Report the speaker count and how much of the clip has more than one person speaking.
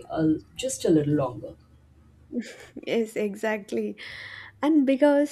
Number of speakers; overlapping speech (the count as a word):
two, no overlap